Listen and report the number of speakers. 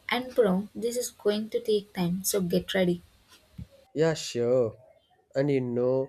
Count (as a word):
two